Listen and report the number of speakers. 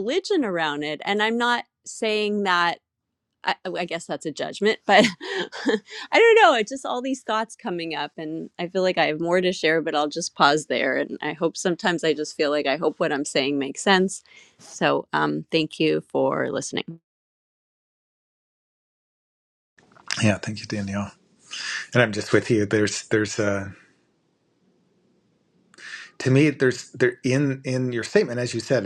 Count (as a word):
two